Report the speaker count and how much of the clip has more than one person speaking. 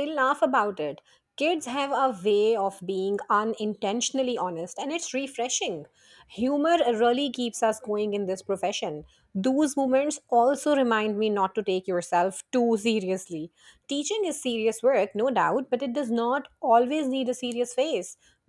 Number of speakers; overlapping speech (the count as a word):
one, no overlap